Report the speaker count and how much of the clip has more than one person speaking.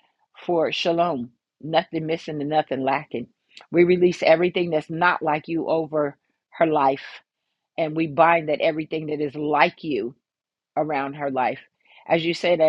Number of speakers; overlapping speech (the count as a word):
one, no overlap